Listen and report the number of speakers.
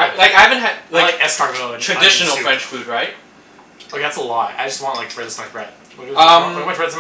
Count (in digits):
2